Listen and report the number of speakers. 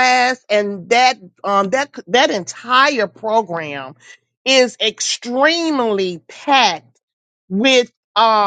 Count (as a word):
one